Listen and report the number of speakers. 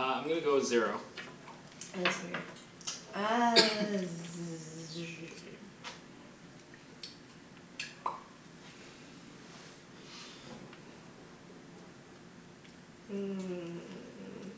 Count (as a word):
two